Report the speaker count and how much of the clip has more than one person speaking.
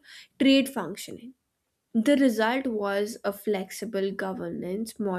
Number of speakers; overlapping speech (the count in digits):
1, no overlap